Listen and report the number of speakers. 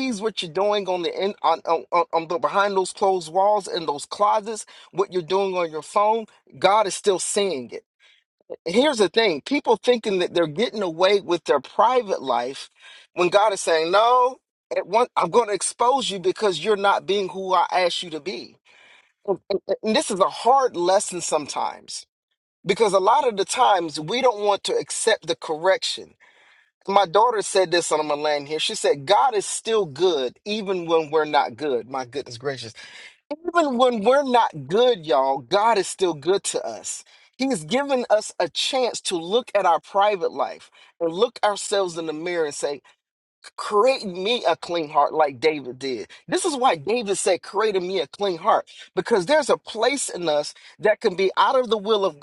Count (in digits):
1